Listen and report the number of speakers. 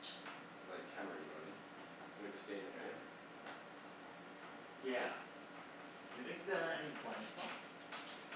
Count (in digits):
2